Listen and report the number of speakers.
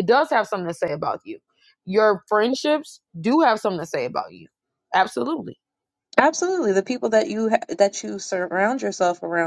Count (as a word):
two